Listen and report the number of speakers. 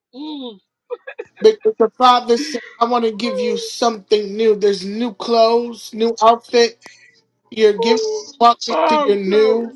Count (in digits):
2